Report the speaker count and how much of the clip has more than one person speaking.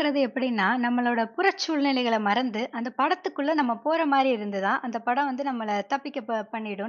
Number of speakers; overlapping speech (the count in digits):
1, no overlap